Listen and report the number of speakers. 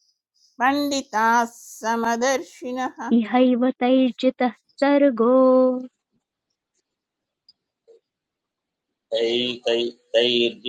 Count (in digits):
3